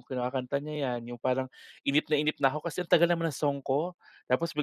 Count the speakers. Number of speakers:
one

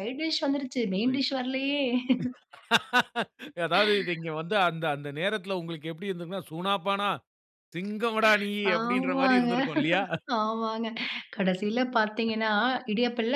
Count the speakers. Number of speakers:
two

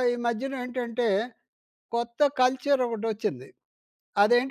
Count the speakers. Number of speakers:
one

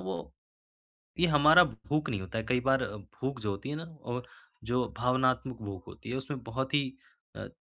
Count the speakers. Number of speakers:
one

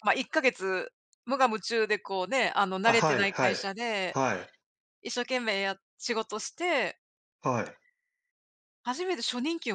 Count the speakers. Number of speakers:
two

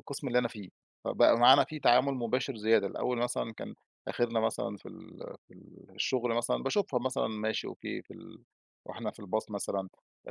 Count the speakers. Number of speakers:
one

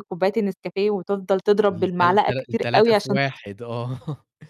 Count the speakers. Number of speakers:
two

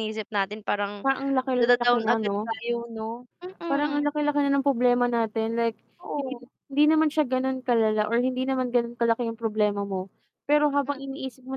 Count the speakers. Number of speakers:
two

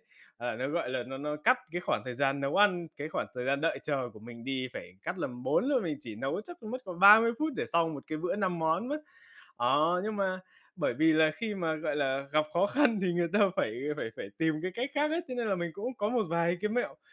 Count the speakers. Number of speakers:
one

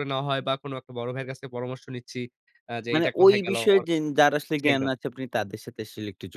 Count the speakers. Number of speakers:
two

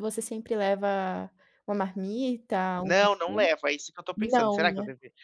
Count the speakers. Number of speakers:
two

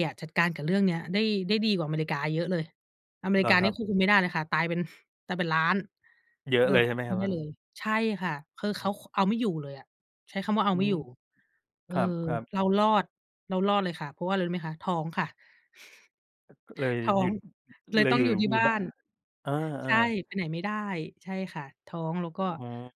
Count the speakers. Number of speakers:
two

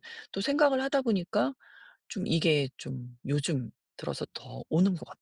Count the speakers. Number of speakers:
one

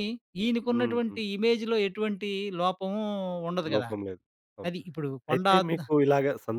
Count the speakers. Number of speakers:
two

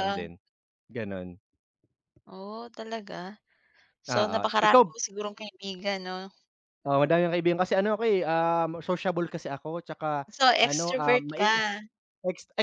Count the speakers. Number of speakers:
two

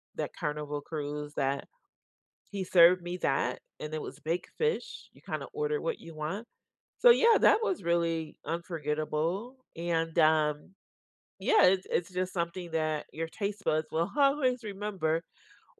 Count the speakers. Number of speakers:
one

